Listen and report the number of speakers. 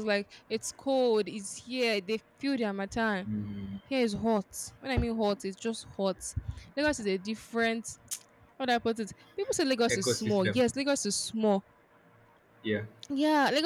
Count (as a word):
two